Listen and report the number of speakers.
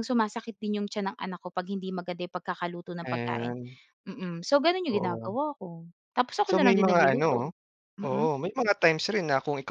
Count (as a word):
two